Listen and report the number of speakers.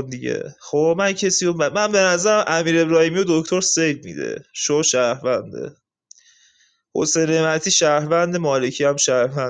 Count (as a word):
one